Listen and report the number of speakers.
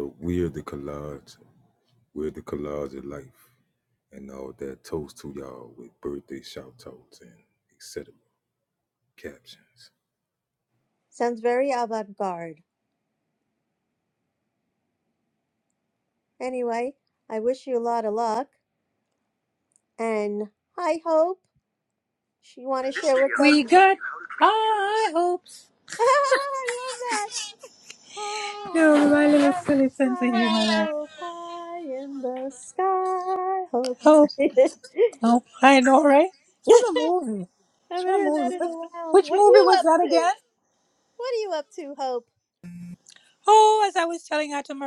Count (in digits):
3